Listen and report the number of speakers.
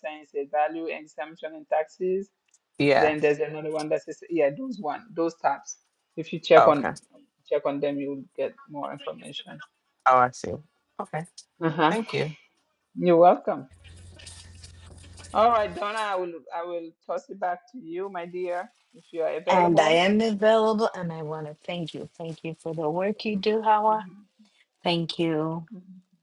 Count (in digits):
3